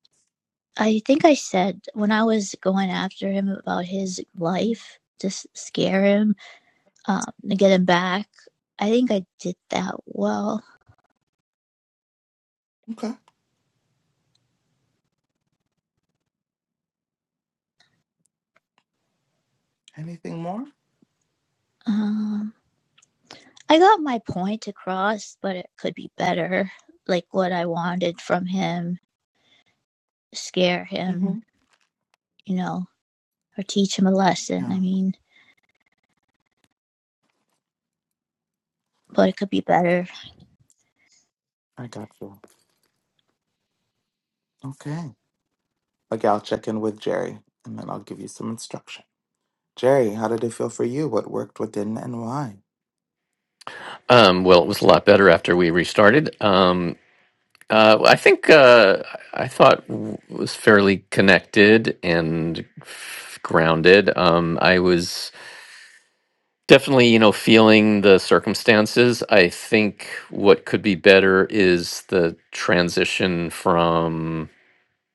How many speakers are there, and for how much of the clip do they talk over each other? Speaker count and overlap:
3, about 1%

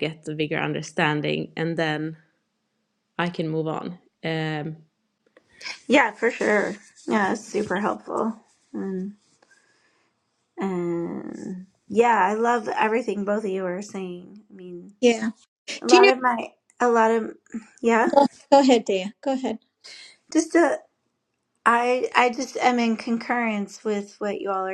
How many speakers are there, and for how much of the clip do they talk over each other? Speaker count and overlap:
3, about 1%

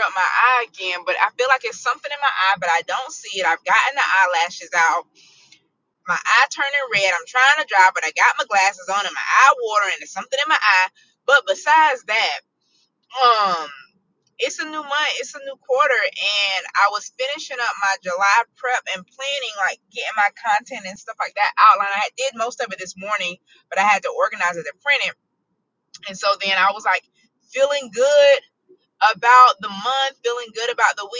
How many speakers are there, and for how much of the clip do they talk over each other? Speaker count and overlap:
1, no overlap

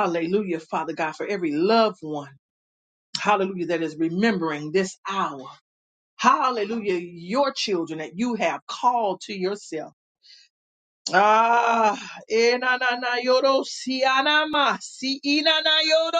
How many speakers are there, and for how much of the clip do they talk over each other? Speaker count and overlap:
1, no overlap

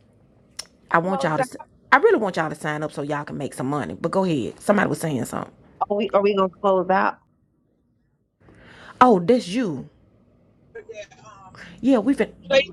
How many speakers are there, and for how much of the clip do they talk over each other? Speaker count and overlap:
2, about 3%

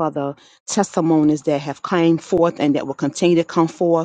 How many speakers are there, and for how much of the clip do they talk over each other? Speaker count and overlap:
1, no overlap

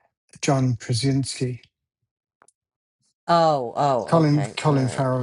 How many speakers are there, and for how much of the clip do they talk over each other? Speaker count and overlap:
2, about 19%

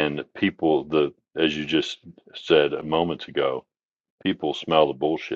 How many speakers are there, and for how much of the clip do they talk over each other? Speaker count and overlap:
1, no overlap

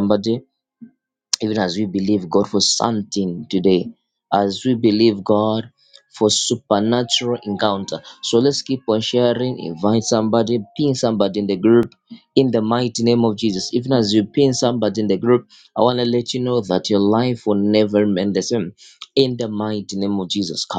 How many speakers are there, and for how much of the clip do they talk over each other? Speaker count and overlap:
1, no overlap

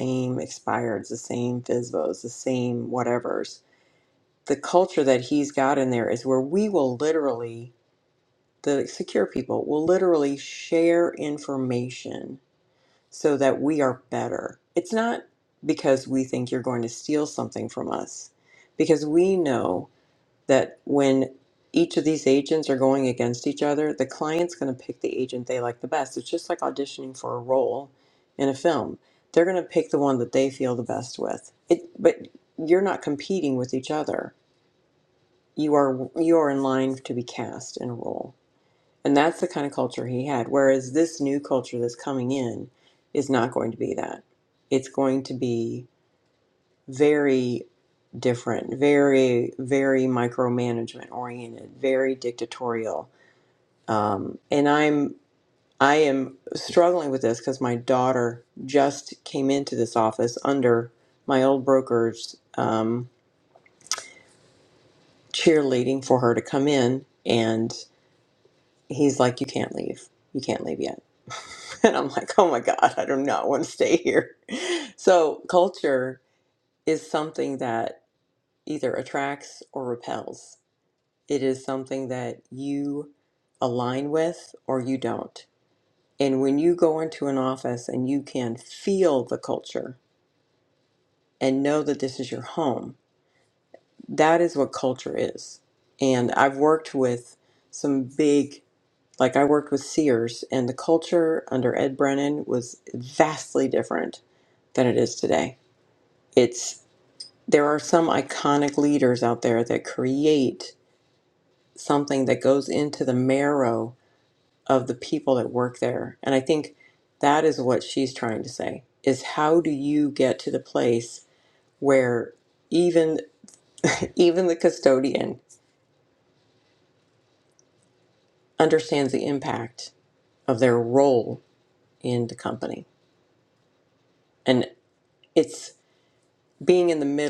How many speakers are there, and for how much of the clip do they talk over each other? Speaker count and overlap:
1, no overlap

